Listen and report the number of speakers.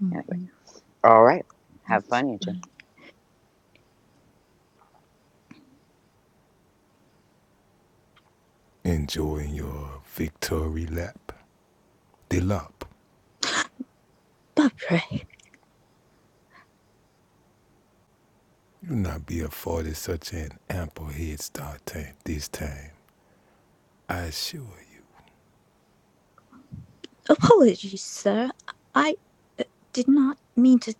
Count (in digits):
3